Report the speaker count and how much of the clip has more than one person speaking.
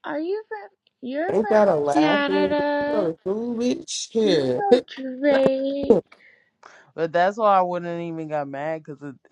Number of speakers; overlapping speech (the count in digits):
3, about 20%